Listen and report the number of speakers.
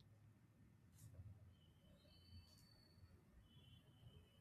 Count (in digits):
0